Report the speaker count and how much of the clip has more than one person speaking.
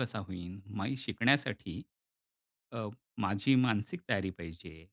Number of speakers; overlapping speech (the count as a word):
one, no overlap